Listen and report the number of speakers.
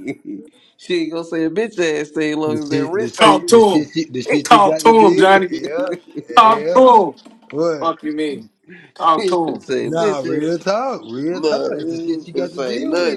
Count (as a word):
three